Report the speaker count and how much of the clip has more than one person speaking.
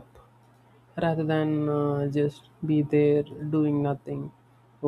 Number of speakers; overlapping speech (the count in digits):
1, no overlap